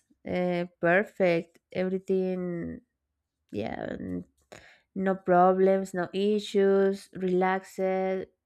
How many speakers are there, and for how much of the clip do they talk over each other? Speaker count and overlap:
1, no overlap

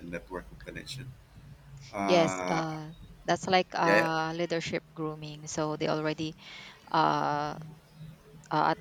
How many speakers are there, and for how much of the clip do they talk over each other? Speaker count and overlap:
2, about 11%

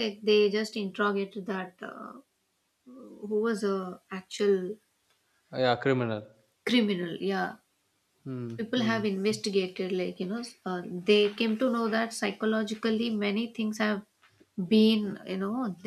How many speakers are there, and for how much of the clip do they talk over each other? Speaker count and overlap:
2, about 3%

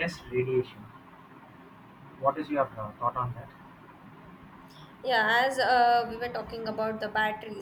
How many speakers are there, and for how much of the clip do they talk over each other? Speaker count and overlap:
2, no overlap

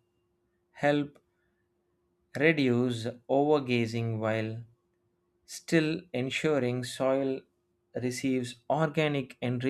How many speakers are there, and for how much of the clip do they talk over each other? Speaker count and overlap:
1, no overlap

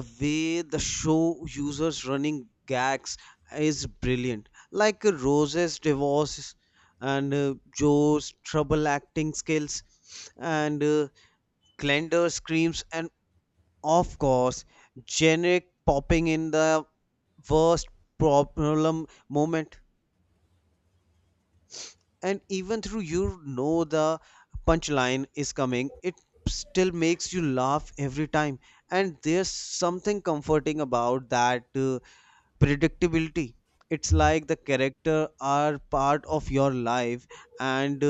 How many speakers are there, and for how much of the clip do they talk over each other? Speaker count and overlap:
1, no overlap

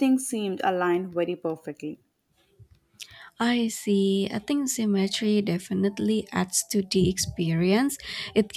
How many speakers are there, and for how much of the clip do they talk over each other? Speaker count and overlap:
2, no overlap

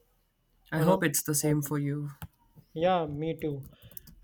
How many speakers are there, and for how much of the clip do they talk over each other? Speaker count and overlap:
2, about 11%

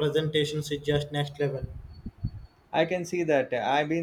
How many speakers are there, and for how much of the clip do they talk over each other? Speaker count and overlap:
2, no overlap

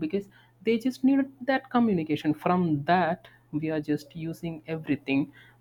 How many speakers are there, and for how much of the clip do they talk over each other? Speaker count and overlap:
1, no overlap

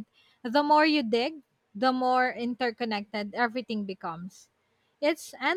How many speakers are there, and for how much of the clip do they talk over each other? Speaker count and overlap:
1, no overlap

